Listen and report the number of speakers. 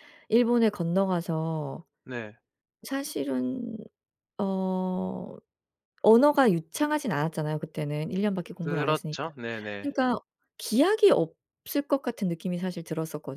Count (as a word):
two